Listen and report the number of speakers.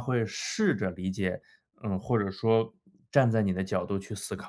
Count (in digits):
1